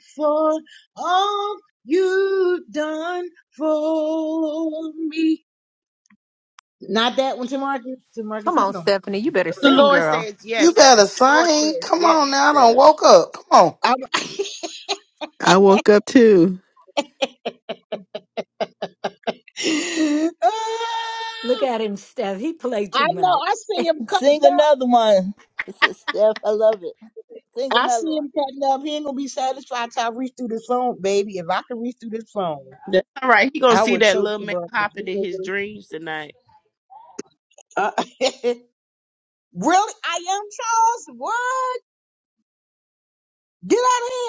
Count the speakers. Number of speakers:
7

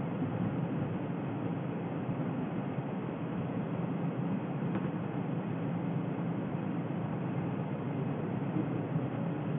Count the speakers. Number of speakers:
0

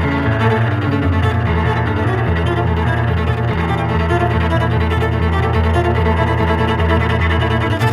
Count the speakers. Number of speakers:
0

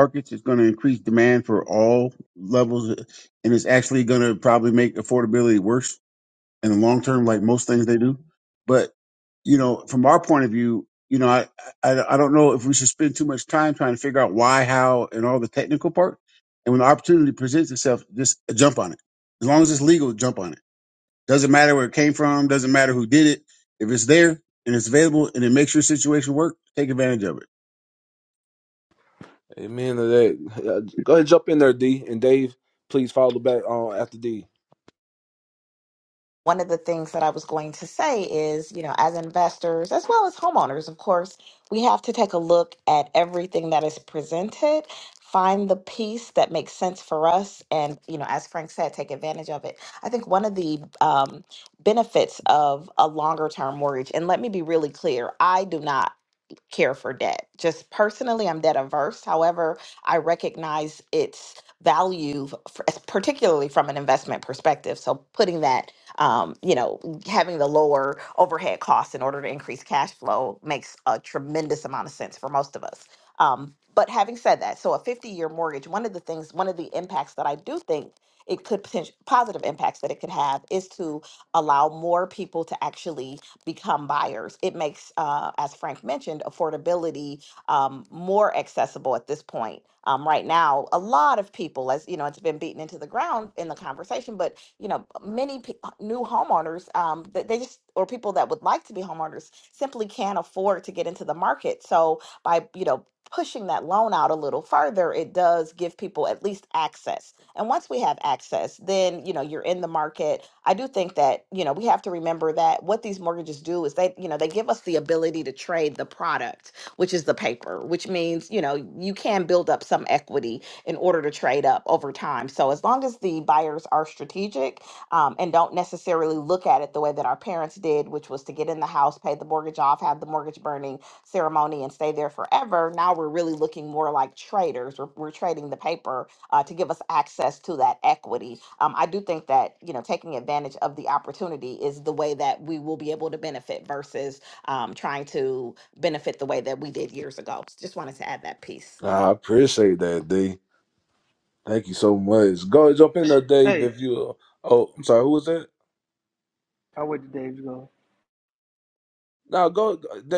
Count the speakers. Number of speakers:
4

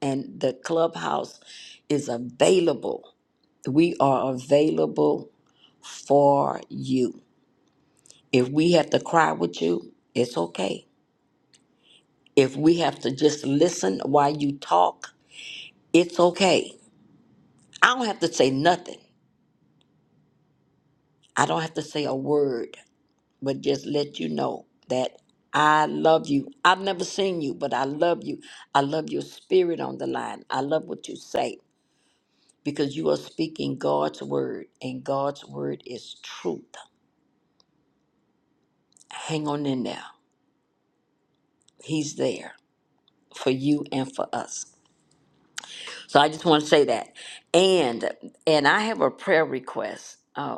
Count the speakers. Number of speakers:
1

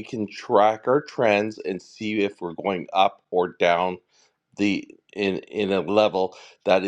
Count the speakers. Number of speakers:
1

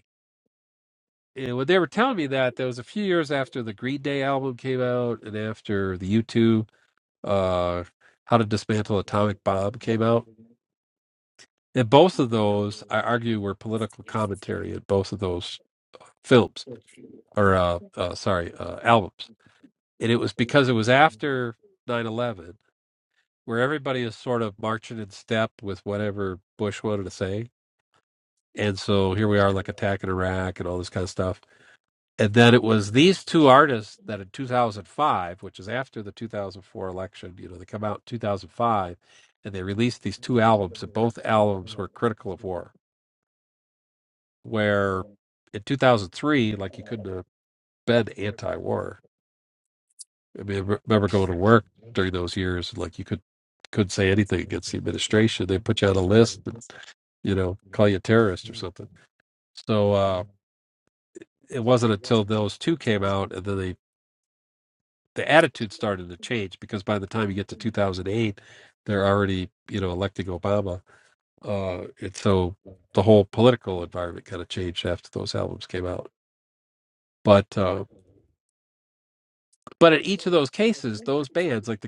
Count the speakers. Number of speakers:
1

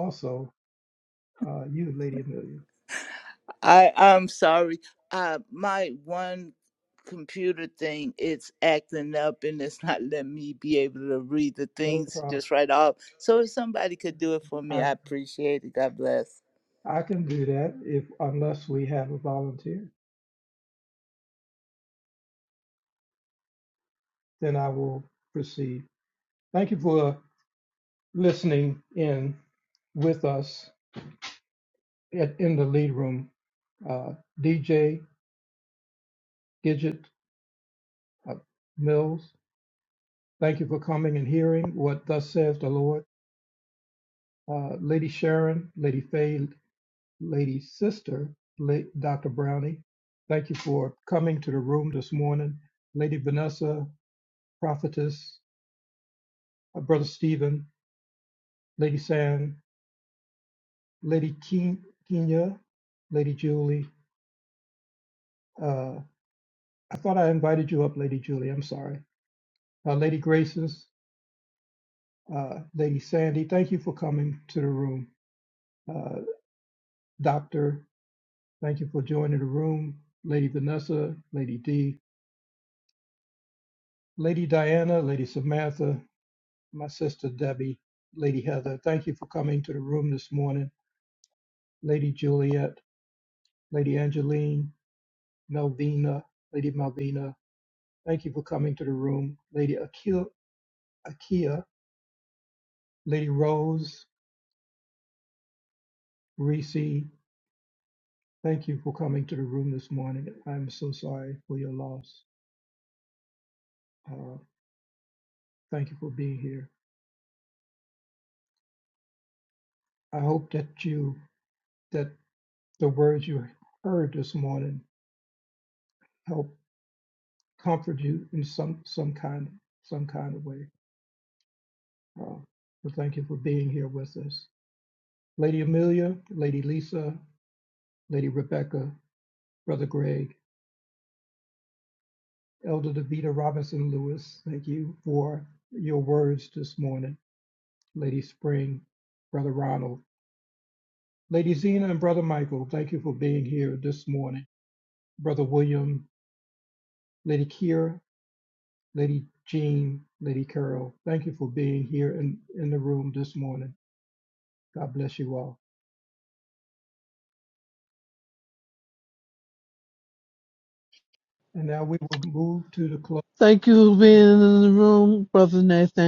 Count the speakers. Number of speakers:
3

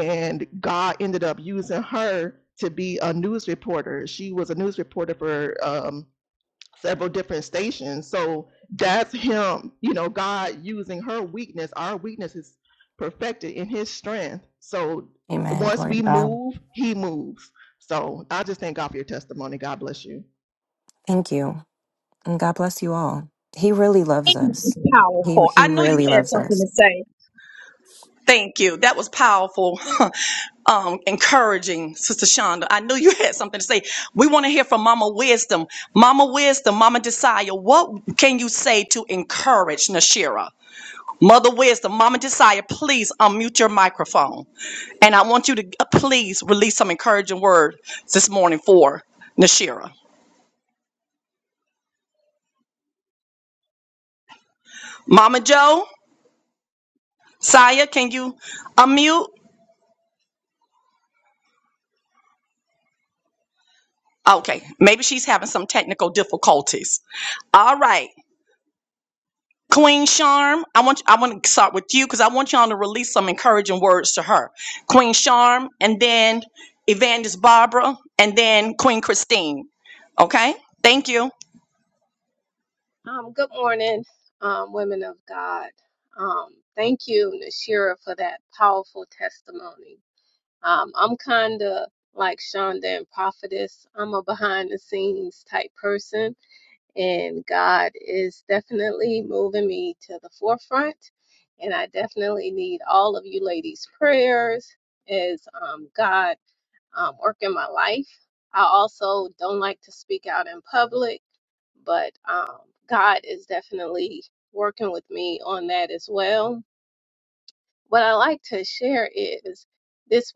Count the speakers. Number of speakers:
4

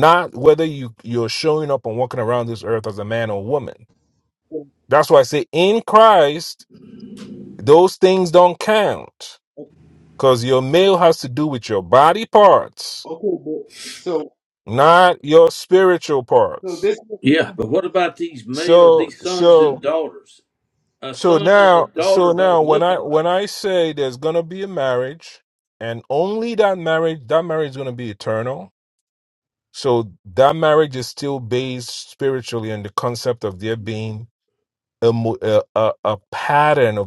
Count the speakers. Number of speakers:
3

